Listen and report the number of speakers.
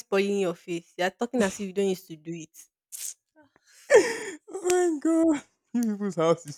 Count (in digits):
2